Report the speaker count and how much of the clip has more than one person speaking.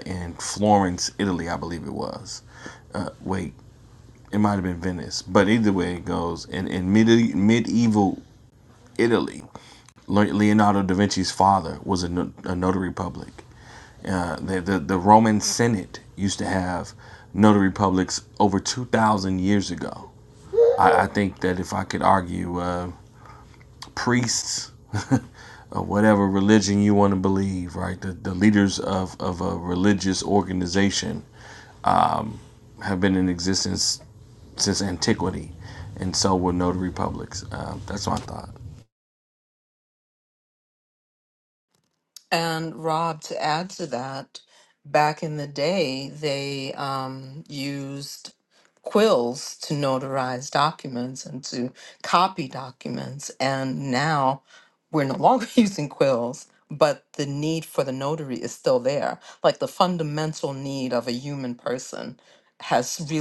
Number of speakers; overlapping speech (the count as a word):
two, no overlap